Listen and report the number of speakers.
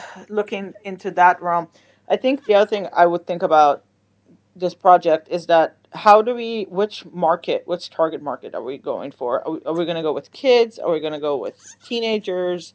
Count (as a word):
one